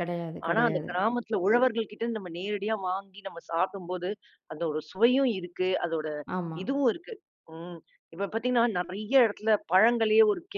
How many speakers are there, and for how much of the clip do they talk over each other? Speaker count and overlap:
two, about 5%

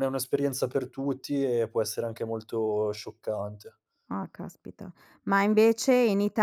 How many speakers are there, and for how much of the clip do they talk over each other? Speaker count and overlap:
two, no overlap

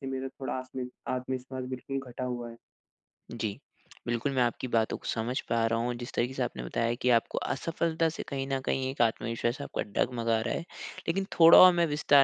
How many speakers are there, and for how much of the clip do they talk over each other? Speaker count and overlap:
two, no overlap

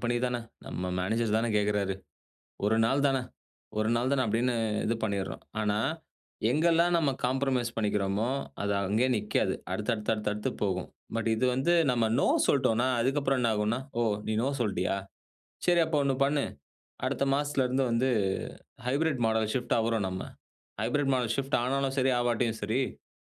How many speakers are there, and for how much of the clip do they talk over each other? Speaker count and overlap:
one, no overlap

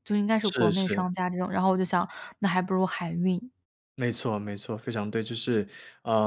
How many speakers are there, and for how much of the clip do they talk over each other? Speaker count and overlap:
two, about 10%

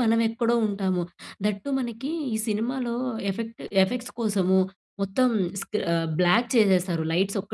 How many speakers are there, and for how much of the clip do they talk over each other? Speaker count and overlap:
one, no overlap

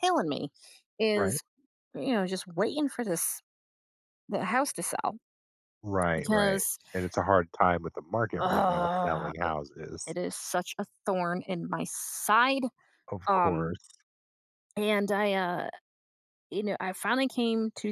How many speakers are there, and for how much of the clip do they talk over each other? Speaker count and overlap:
two, about 8%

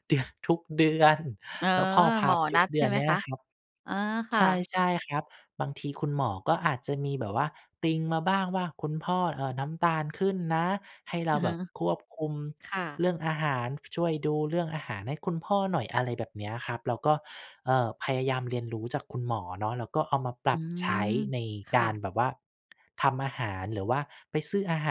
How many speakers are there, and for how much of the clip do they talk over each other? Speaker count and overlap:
two, about 7%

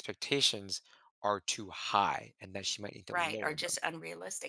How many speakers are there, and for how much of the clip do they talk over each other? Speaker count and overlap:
two, about 13%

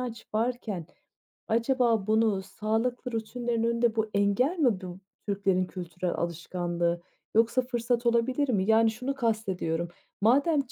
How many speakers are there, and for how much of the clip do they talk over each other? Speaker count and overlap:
one, no overlap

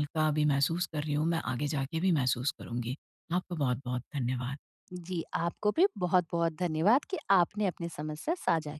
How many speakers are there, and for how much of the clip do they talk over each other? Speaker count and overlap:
two, no overlap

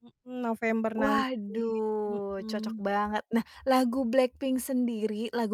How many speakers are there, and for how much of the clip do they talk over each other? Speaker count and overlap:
two, about 12%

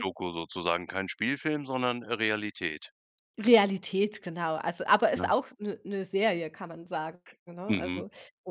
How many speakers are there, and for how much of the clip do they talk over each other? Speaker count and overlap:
two, about 6%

